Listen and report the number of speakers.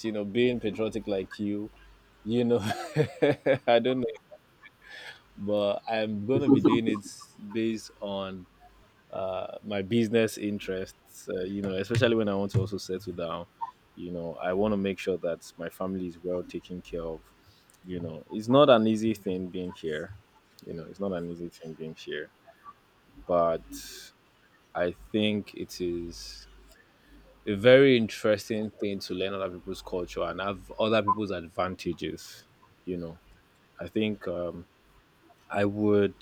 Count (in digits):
1